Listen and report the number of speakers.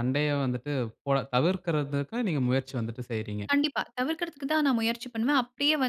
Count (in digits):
2